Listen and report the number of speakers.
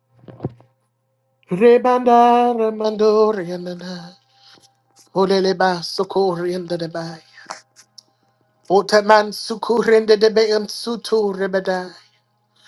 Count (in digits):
1